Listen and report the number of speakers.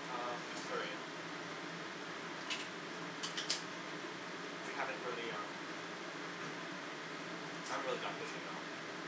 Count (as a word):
one